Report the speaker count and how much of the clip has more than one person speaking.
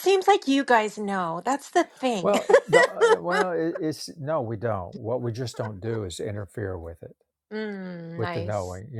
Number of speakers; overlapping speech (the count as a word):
two, about 5%